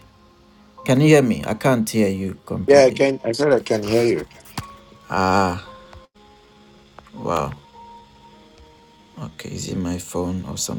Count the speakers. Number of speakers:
two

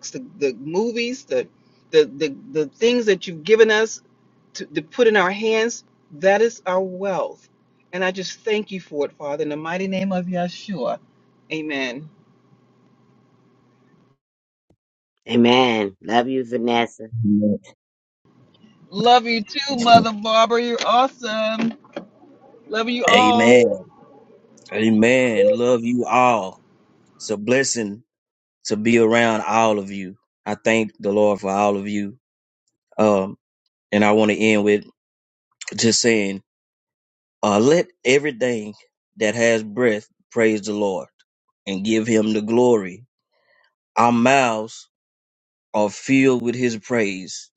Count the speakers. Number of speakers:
three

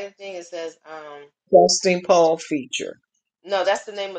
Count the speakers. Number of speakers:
two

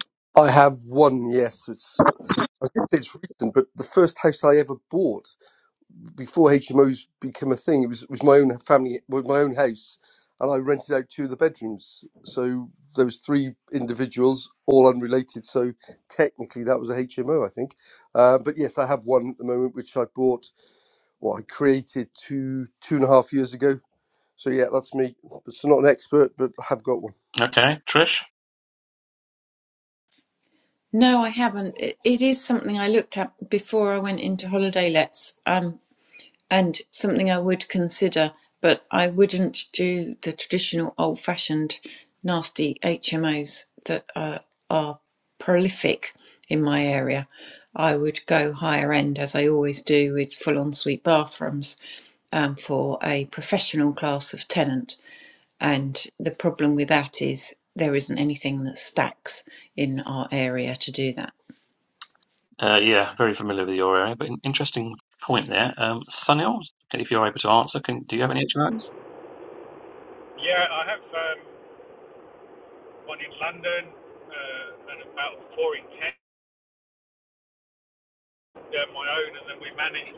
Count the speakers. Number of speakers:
four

